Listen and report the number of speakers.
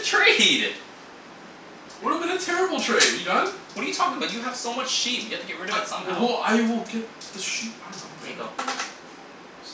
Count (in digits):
2